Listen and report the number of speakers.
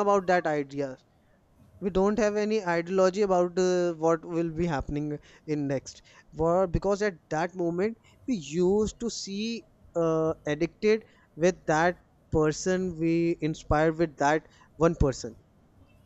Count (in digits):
1